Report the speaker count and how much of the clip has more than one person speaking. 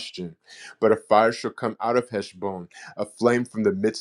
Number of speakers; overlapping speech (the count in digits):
1, no overlap